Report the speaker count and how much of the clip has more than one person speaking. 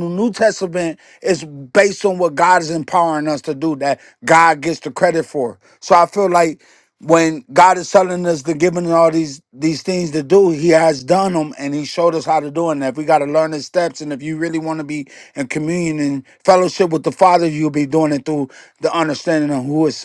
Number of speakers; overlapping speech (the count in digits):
1, no overlap